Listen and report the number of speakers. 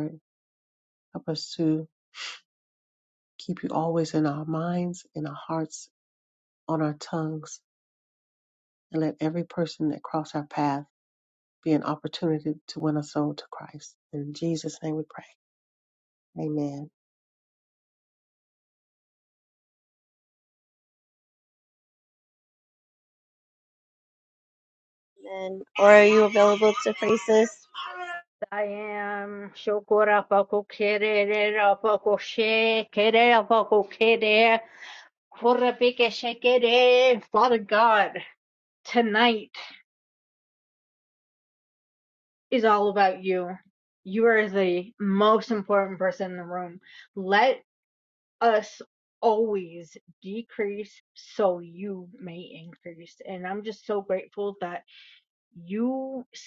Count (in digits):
3